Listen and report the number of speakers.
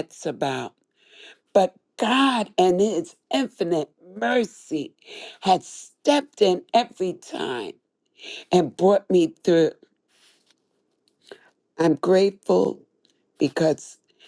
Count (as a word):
one